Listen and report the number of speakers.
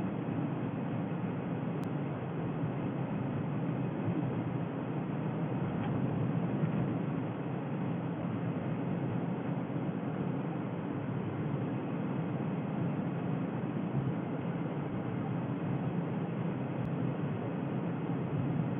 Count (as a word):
zero